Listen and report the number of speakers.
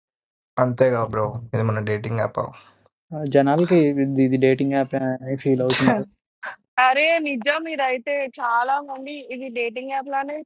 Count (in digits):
3